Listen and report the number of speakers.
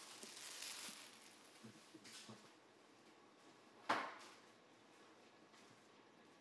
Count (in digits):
0